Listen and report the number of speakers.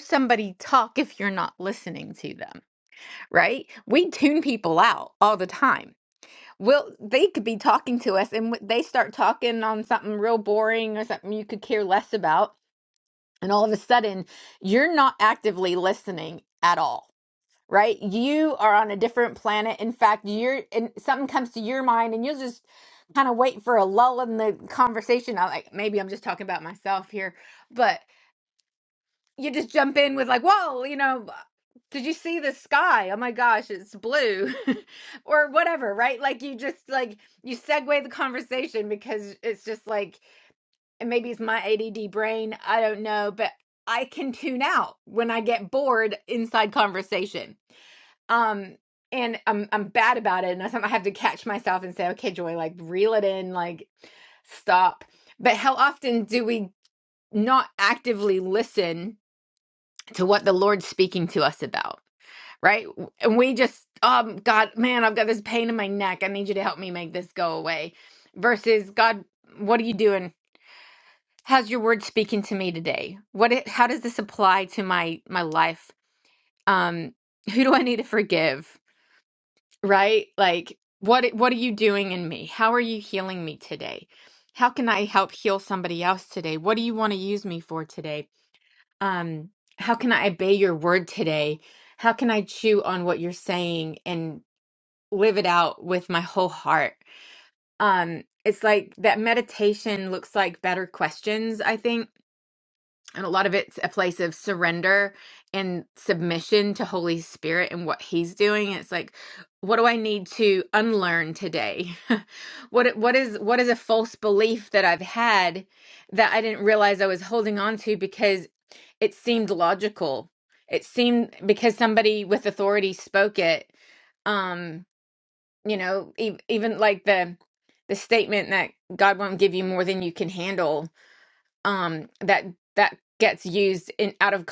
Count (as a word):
one